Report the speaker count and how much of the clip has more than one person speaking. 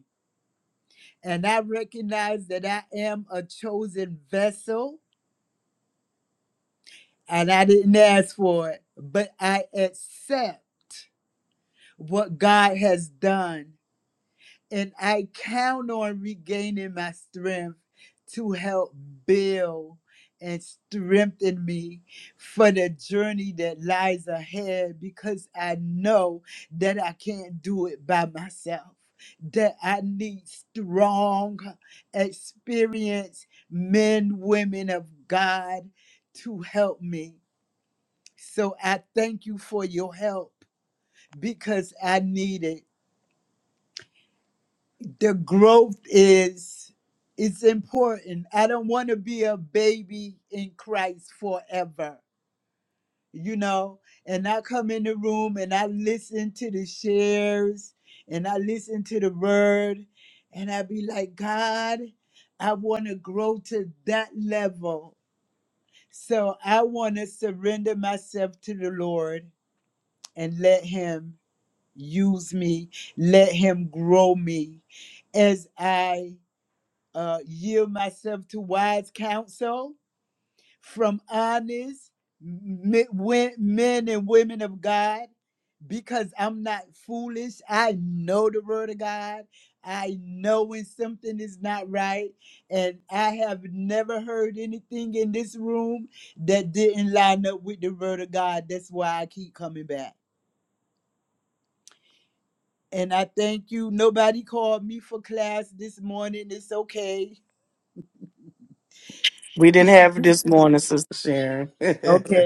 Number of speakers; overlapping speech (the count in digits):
2, under 1%